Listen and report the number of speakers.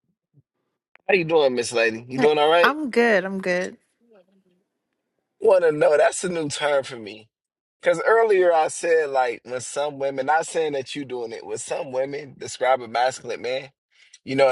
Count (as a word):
two